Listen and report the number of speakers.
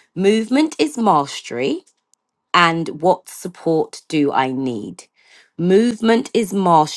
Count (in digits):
1